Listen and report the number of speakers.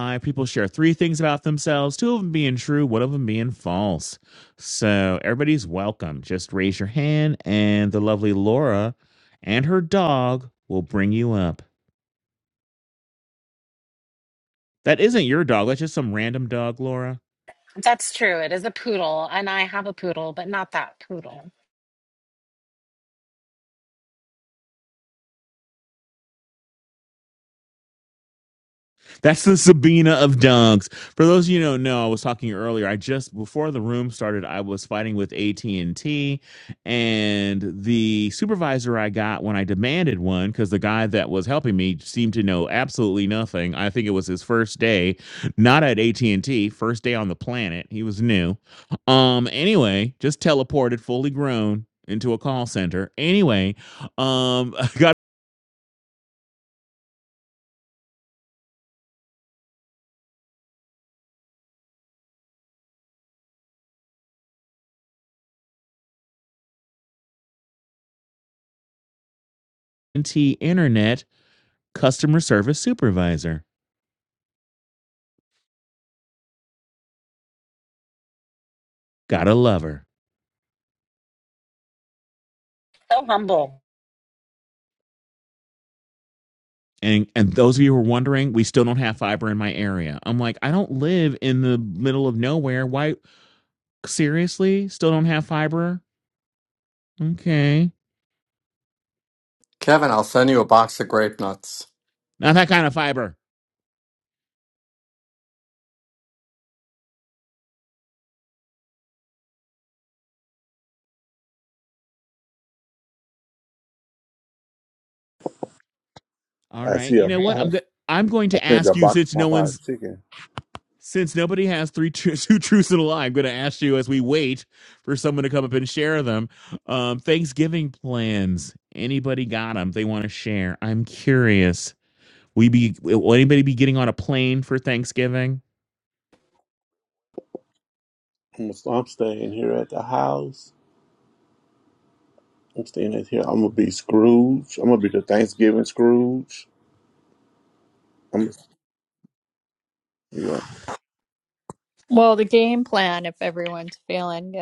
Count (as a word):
five